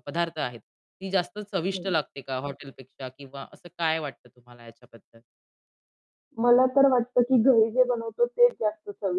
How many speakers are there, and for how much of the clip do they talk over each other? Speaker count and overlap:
2, about 2%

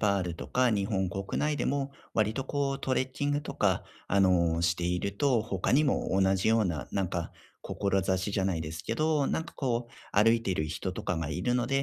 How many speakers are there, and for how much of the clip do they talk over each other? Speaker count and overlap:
1, no overlap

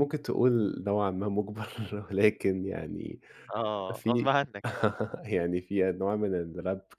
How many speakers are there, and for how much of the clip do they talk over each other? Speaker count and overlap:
2, about 6%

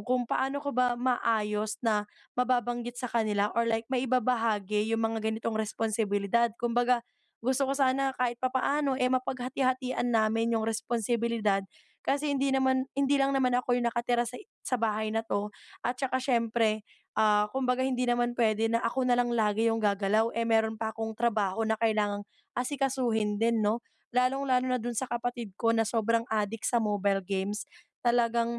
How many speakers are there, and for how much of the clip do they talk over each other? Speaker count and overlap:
1, no overlap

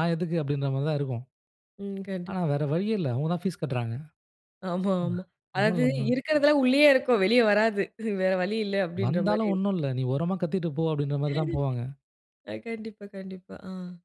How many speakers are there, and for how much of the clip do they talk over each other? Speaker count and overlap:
2, about 10%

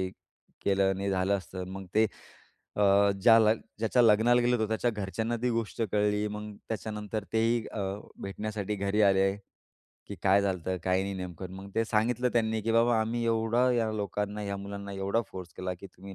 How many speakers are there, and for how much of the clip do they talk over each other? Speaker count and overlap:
1, no overlap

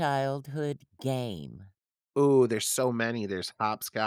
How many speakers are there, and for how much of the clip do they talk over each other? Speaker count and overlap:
2, no overlap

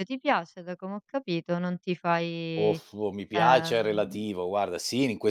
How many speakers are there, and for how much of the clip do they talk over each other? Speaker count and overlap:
2, about 21%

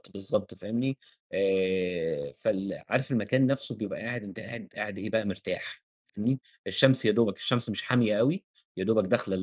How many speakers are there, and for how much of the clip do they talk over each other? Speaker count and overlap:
1, no overlap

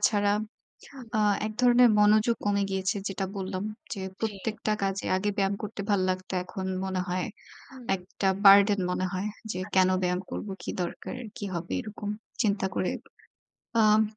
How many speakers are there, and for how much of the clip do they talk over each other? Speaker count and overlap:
2, about 6%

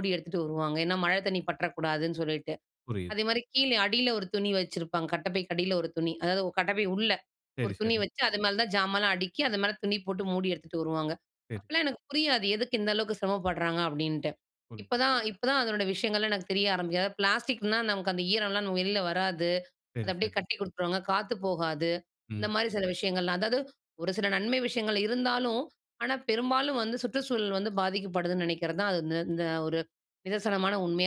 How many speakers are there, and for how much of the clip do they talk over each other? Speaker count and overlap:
2, about 3%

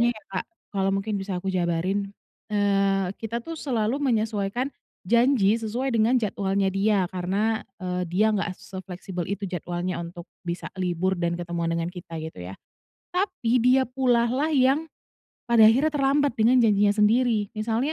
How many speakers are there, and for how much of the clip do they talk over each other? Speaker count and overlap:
1, no overlap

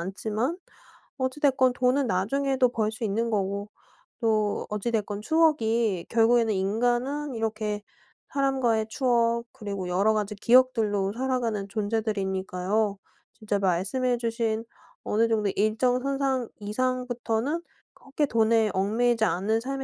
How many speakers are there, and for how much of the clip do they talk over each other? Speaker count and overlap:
1, no overlap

